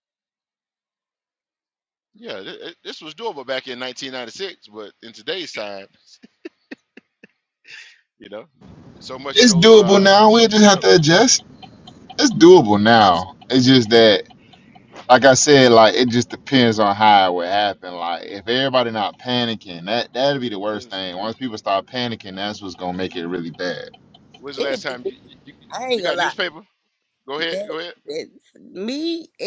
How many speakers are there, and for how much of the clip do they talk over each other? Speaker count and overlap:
three, about 9%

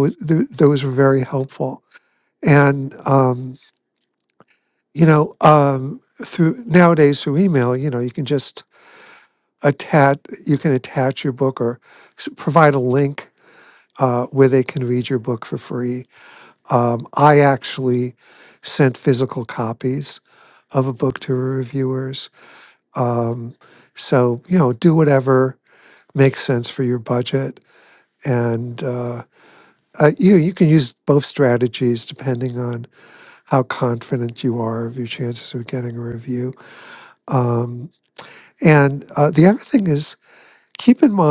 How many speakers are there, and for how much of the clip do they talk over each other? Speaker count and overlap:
one, no overlap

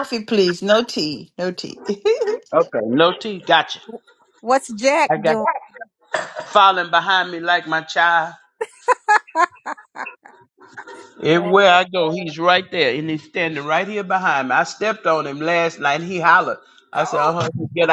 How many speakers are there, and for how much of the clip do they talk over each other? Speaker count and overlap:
three, about 7%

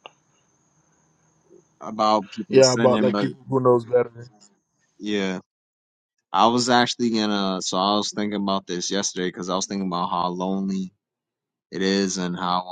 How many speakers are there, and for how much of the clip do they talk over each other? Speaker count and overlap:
two, about 7%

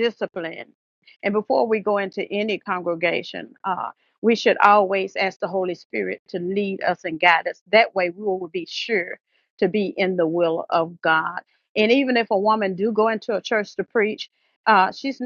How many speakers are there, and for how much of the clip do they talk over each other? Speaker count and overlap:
one, no overlap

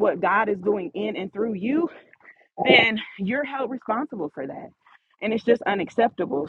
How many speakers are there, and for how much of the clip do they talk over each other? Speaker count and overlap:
one, no overlap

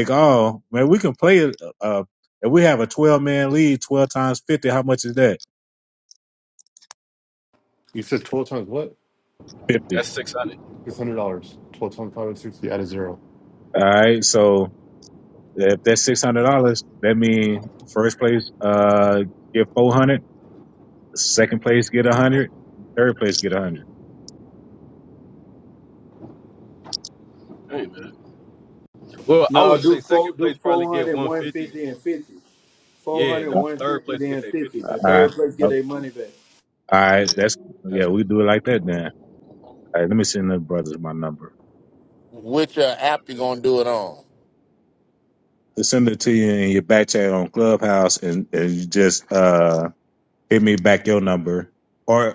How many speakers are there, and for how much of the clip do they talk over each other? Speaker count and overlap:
five, about 10%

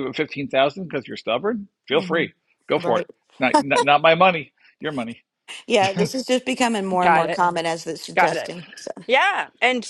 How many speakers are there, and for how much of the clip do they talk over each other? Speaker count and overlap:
three, about 13%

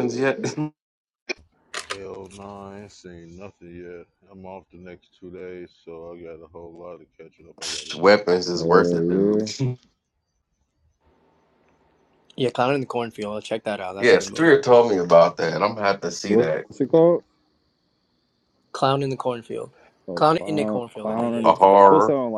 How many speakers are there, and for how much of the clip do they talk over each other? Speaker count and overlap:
four, about 20%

